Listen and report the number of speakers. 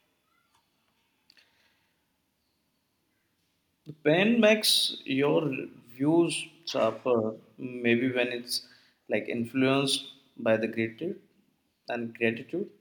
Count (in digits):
1